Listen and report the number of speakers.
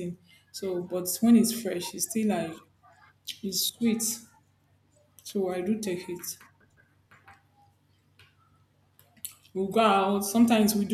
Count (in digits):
1